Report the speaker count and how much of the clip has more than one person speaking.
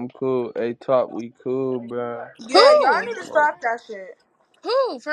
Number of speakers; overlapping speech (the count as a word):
three, about 21%